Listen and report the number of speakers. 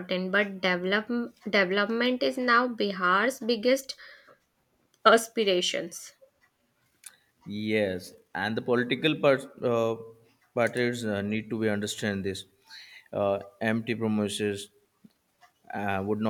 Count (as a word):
two